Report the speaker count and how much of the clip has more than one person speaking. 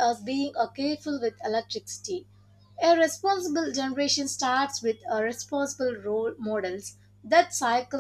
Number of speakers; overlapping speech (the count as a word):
one, no overlap